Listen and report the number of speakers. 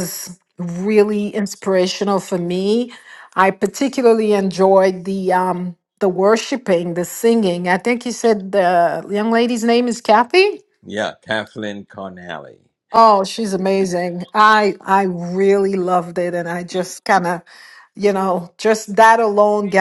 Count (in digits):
2